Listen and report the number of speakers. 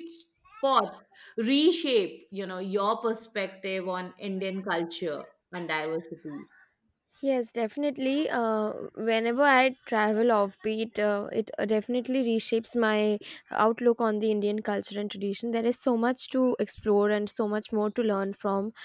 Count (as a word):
two